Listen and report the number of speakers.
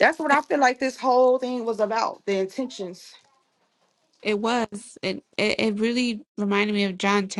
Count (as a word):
two